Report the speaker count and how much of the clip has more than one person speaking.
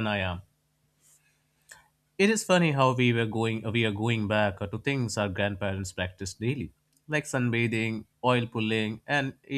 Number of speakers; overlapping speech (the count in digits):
1, no overlap